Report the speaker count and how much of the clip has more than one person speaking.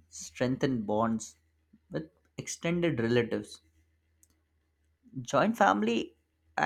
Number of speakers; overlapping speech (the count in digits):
1, no overlap